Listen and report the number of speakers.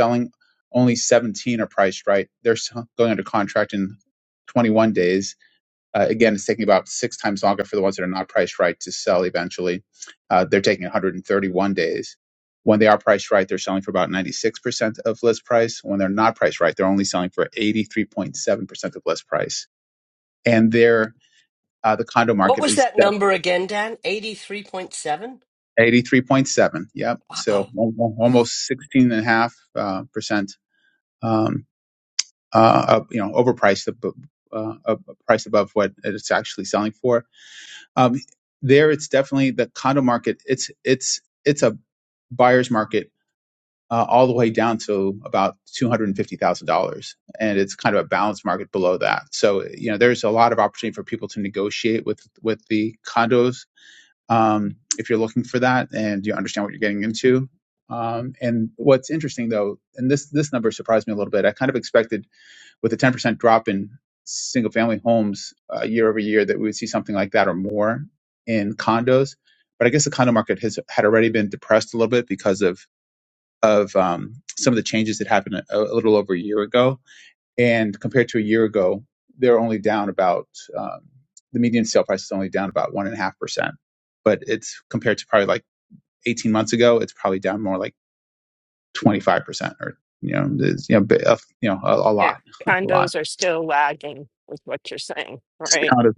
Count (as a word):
three